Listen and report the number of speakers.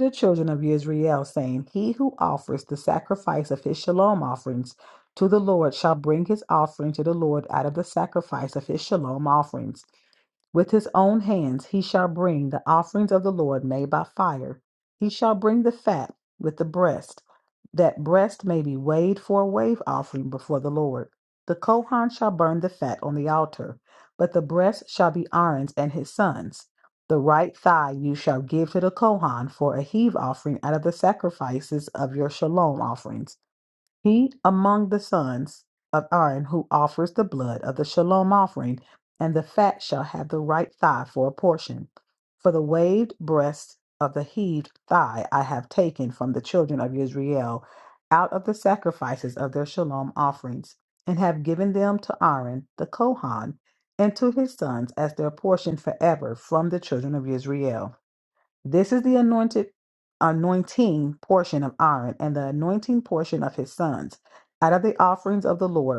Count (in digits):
1